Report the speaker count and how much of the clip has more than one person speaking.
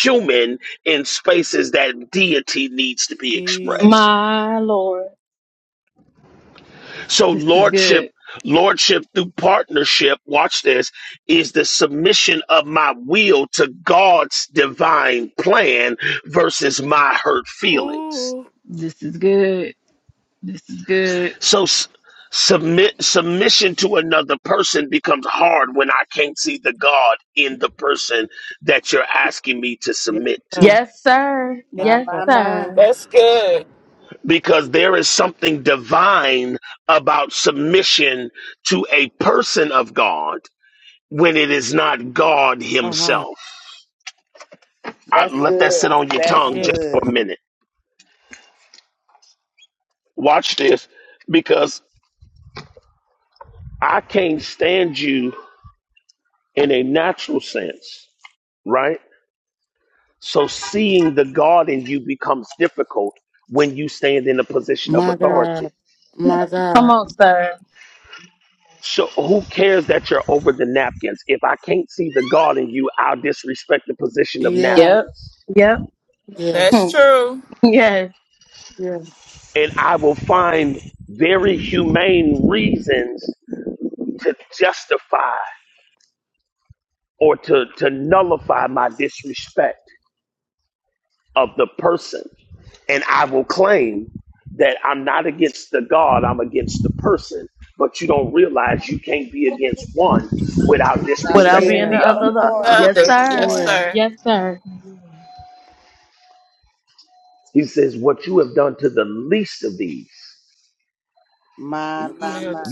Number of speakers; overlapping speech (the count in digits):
6, about 10%